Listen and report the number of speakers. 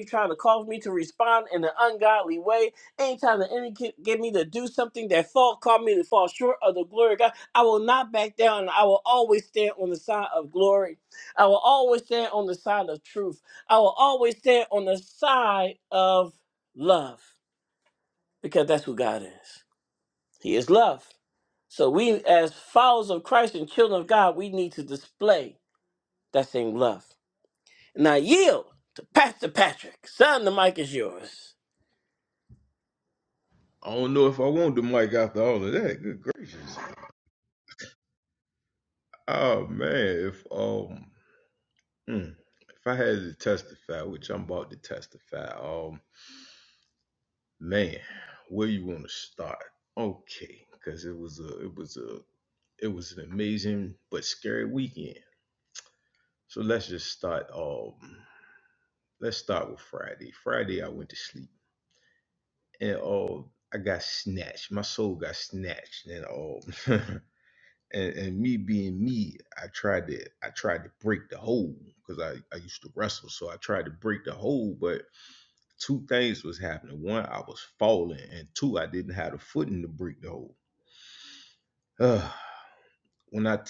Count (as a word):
two